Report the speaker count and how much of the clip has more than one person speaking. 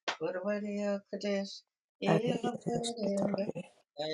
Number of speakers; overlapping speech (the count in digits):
2, about 24%